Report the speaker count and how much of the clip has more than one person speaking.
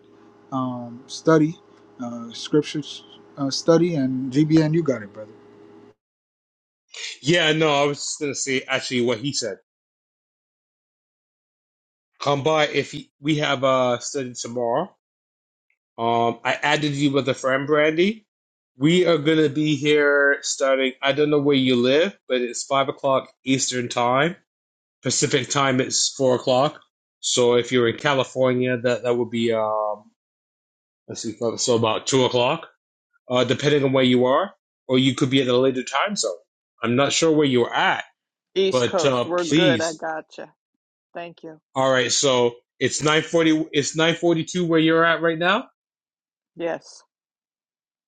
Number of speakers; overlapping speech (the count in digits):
3, about 2%